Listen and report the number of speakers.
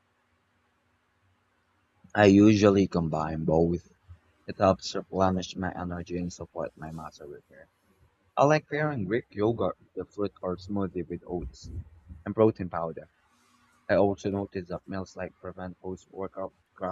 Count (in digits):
1